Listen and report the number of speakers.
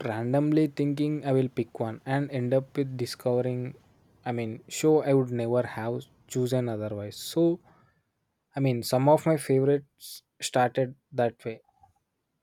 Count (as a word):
one